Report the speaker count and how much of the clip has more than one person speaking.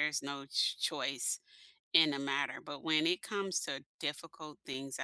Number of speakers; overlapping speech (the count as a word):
one, no overlap